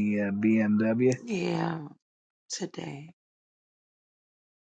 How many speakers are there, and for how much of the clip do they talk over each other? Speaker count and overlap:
2, no overlap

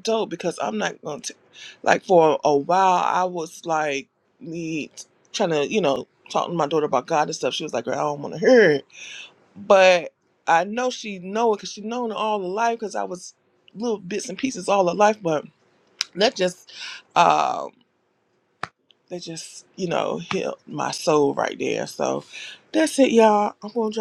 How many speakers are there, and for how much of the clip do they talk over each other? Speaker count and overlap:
1, no overlap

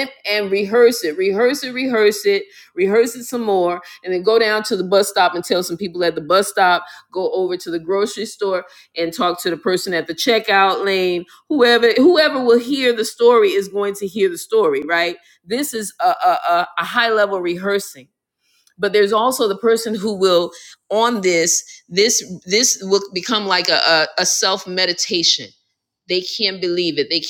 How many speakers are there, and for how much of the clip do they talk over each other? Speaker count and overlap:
1, no overlap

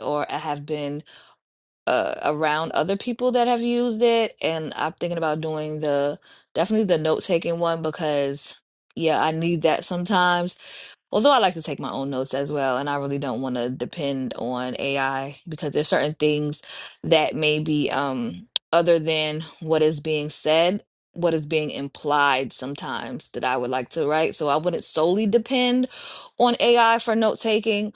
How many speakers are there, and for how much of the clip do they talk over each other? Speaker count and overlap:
1, no overlap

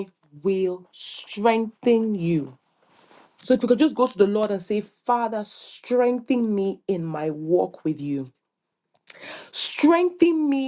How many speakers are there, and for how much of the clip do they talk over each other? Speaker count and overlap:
1, no overlap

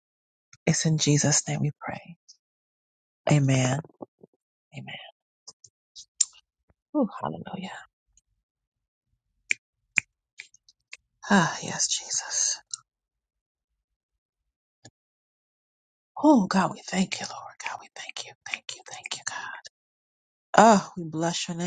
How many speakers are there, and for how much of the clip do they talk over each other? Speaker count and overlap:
1, no overlap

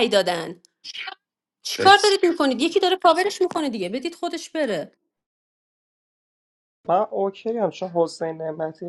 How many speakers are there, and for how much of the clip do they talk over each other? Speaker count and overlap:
2, no overlap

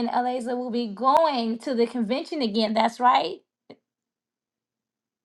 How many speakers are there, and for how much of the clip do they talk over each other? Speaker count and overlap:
1, no overlap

